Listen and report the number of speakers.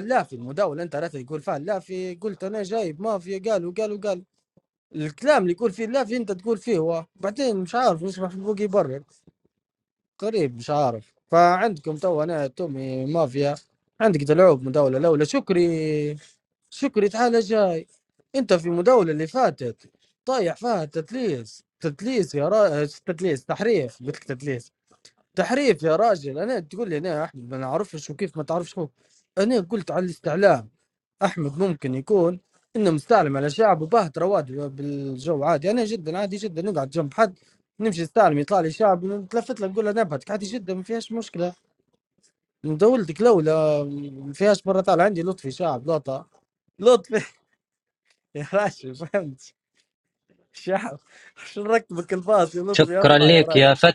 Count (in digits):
2